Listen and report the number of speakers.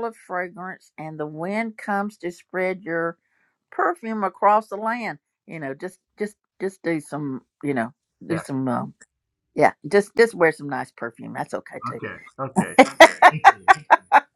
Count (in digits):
2